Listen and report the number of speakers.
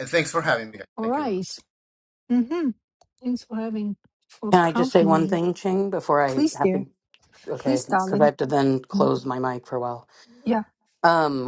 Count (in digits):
3